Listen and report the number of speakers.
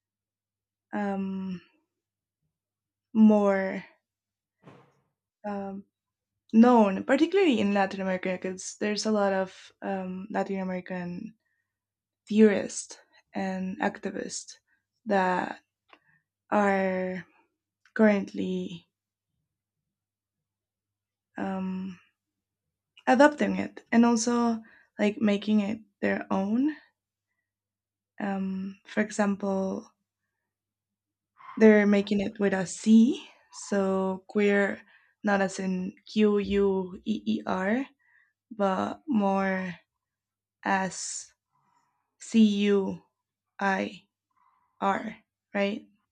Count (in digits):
1